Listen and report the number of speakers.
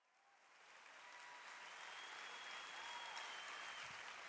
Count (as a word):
zero